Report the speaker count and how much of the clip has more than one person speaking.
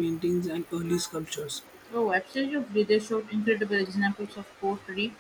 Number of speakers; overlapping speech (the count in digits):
2, no overlap